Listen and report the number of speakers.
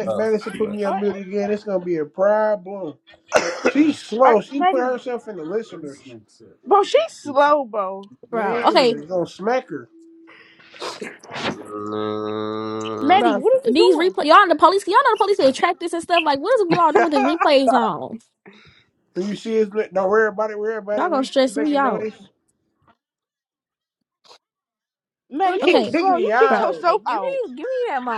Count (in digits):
5